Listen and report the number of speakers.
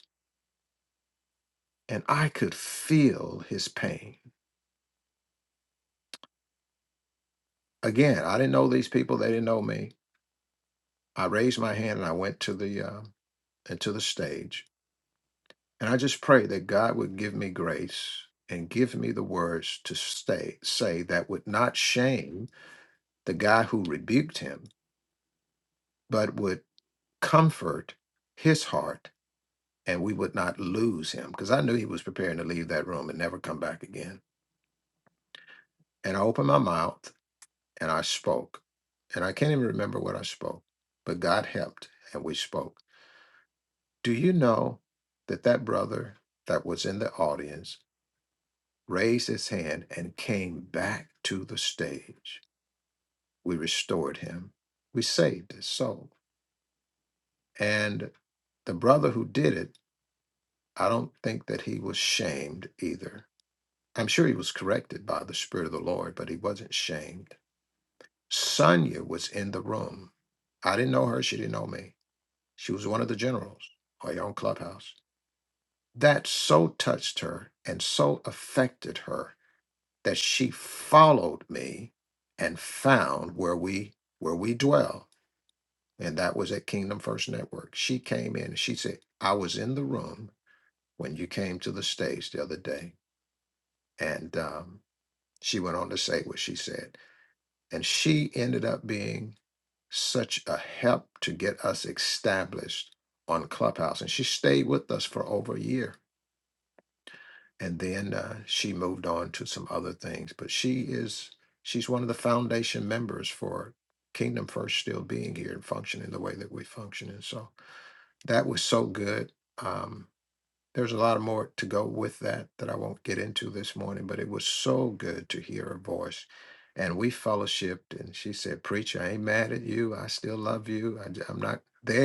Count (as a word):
one